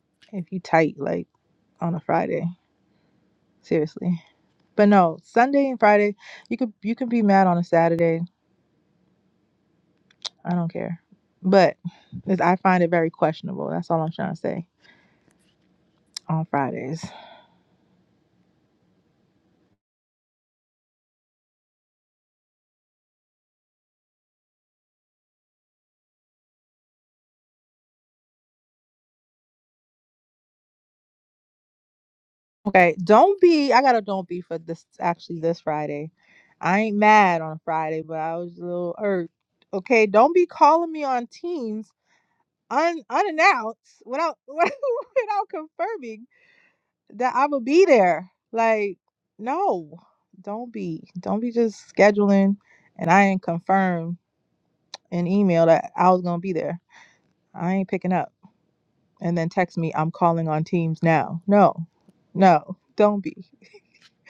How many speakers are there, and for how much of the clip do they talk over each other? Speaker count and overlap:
1, no overlap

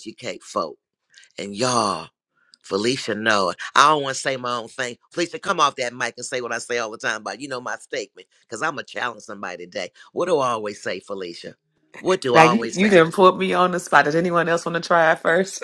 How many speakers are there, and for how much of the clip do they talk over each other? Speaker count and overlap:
2, about 4%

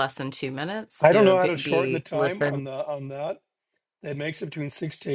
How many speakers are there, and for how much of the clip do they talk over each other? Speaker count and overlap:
2, about 32%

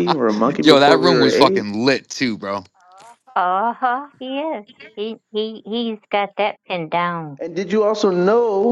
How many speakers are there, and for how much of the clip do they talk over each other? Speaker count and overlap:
3, about 11%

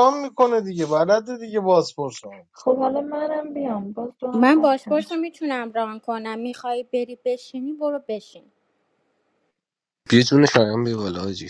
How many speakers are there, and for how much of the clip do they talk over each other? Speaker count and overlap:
4, about 6%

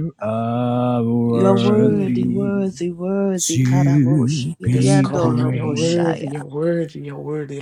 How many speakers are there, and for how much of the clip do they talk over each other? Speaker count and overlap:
3, about 52%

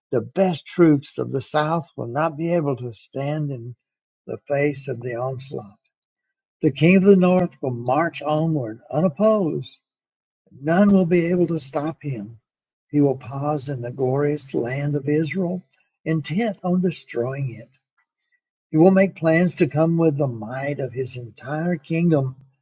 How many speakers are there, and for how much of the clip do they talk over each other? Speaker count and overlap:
1, no overlap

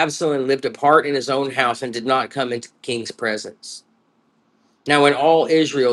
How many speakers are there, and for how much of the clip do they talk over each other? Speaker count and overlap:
1, no overlap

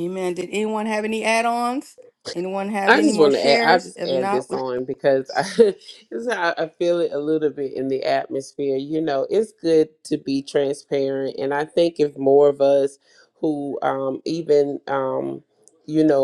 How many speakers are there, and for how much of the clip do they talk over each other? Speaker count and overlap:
2, about 10%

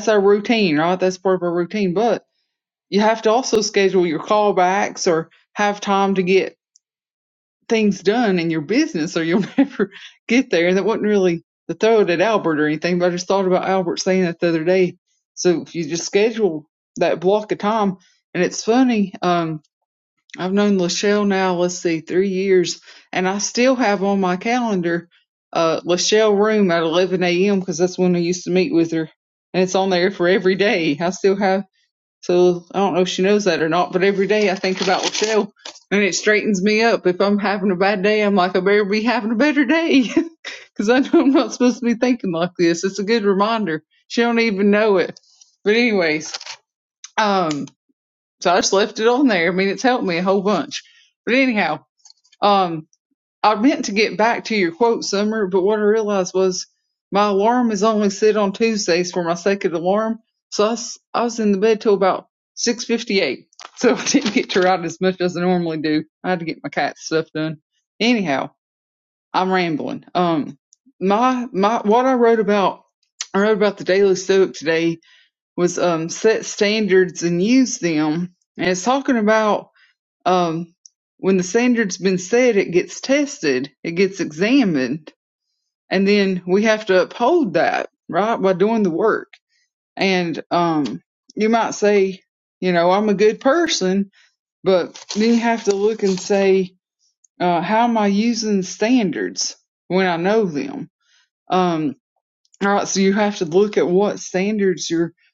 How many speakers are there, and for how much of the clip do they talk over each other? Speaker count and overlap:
1, no overlap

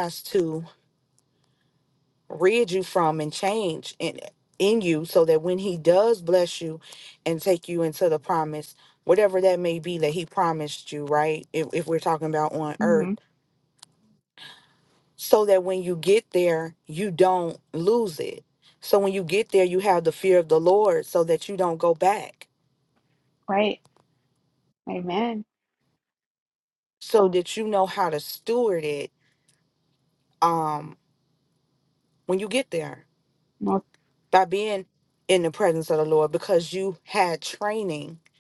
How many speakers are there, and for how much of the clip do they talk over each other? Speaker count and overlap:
2, about 1%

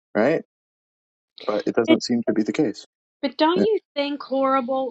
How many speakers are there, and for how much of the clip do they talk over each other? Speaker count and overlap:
2, about 4%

